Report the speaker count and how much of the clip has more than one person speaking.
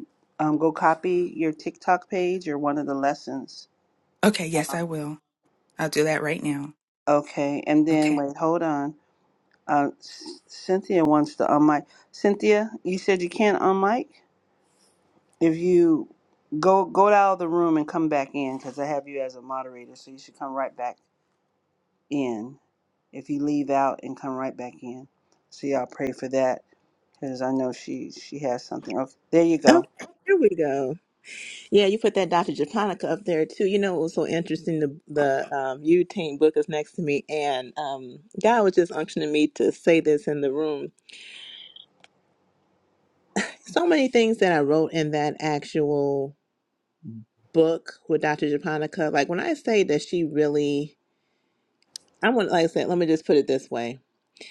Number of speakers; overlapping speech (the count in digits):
3, about 1%